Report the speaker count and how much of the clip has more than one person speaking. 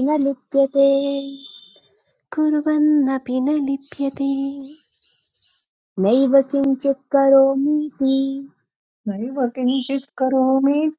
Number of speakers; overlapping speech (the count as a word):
three, no overlap